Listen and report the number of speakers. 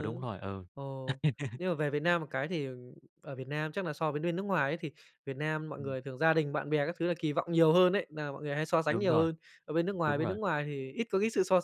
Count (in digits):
2